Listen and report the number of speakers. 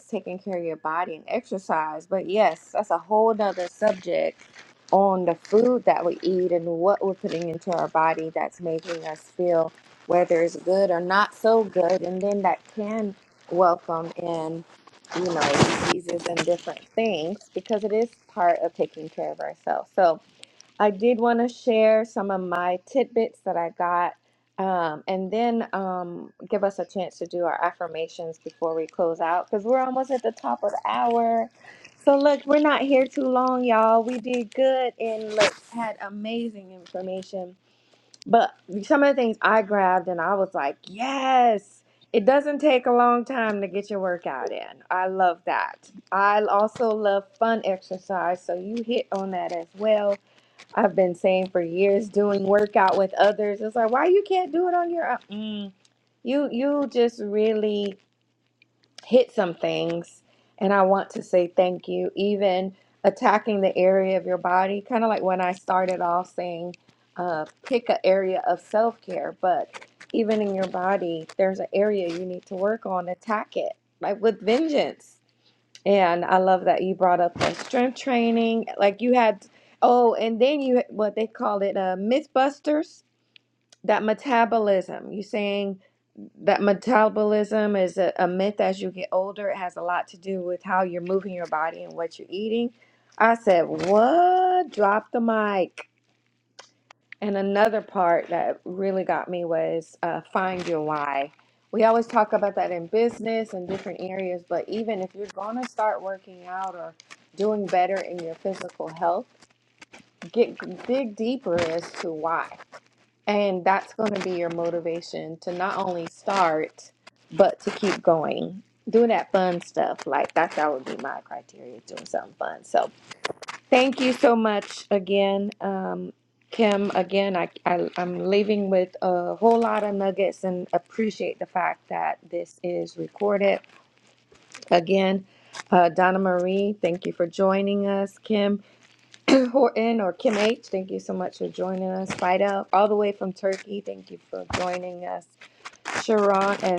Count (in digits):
1